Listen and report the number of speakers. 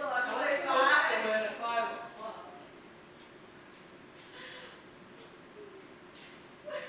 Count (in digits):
2